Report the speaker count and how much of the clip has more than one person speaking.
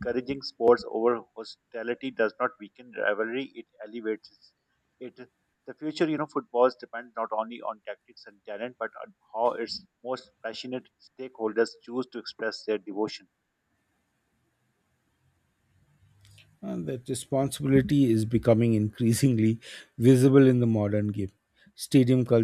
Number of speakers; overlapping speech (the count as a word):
two, no overlap